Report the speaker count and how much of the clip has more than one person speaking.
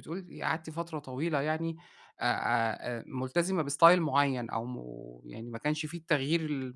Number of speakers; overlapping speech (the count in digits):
1, no overlap